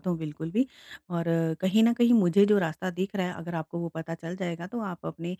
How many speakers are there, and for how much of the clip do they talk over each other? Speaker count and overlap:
1, no overlap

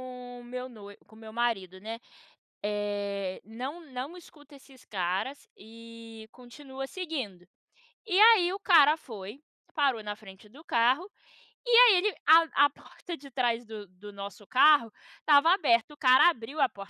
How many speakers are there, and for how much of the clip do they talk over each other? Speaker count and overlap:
1, no overlap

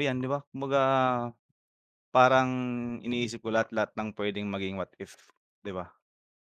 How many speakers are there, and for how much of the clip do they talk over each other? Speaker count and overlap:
1, no overlap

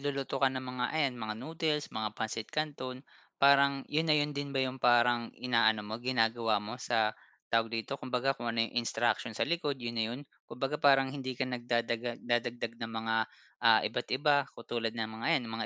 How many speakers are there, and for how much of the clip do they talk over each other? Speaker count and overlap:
1, no overlap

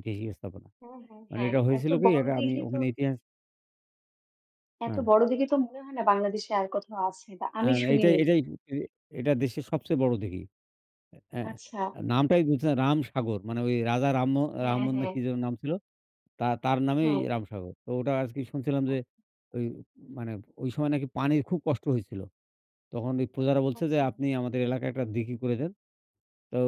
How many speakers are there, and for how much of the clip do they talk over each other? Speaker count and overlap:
2, about 14%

